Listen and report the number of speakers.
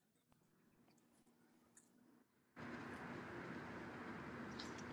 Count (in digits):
0